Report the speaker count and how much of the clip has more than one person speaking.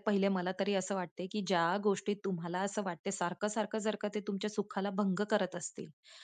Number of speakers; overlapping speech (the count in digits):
1, no overlap